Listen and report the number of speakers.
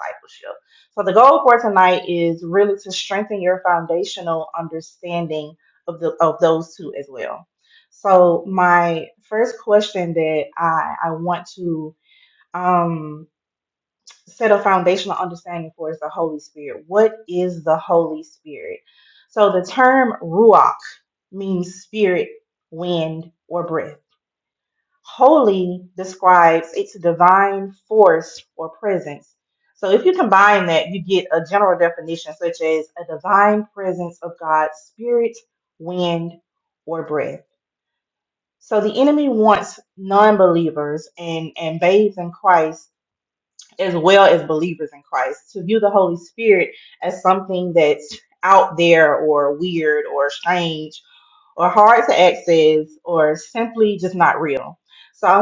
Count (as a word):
one